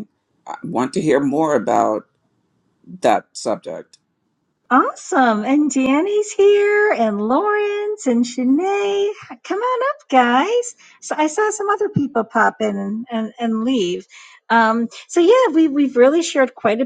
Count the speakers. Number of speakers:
2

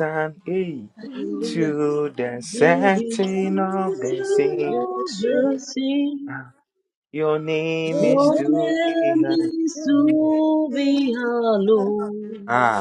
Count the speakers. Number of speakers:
3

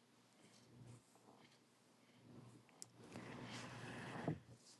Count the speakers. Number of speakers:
0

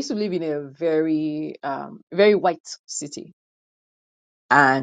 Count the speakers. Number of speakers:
1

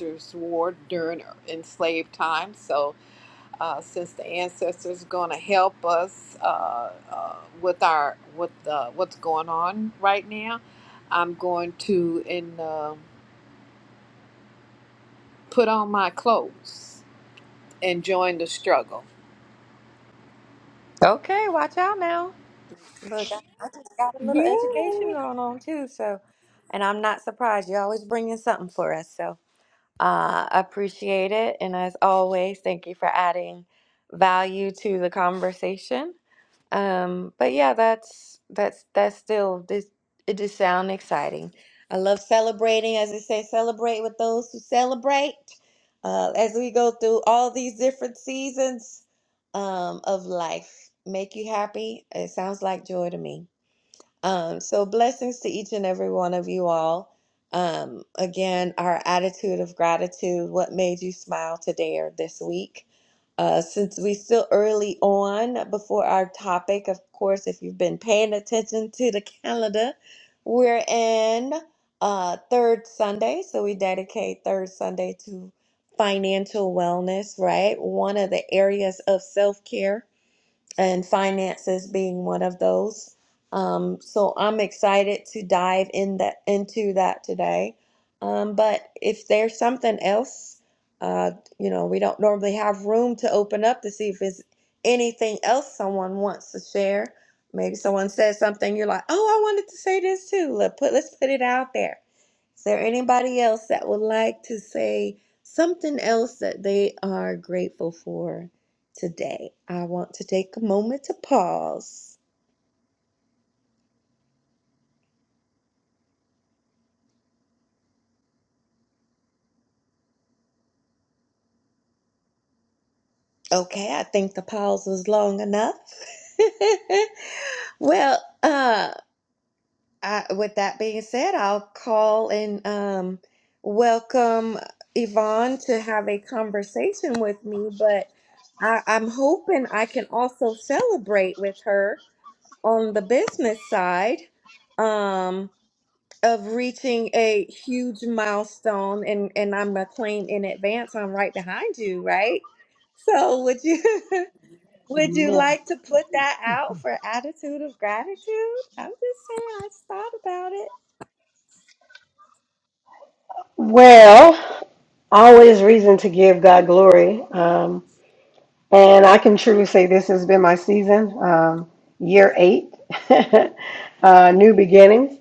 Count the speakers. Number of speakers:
3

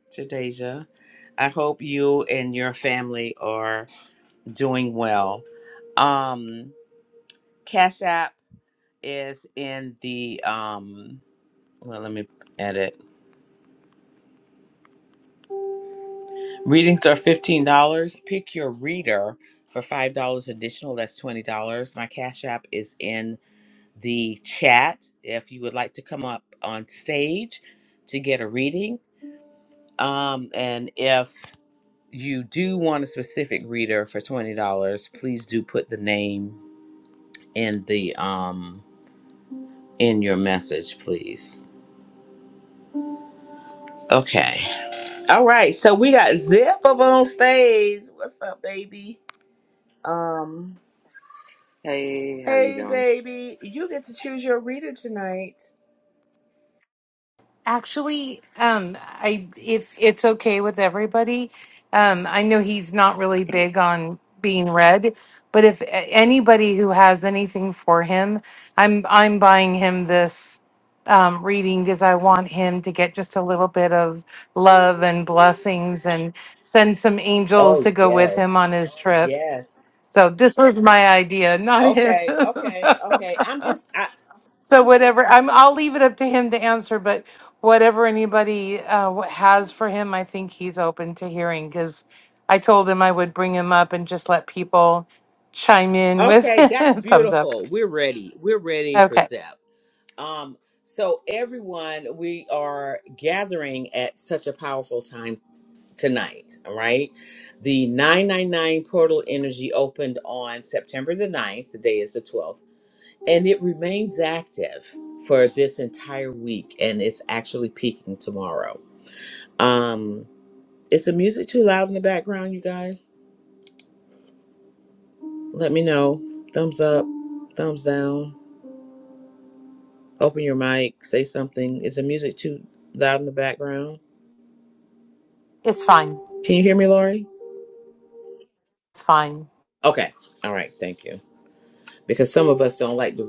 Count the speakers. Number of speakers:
3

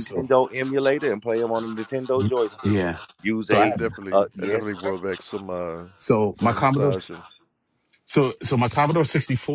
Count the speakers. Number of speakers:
3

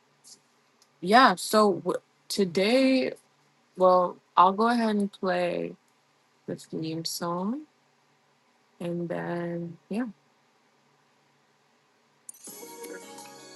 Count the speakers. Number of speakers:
1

